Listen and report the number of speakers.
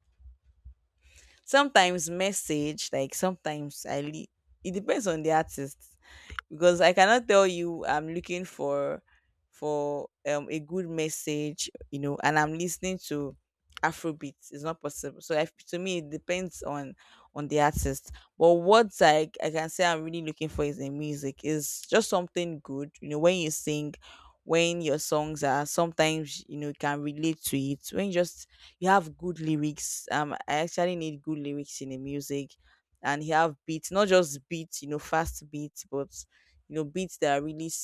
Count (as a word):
one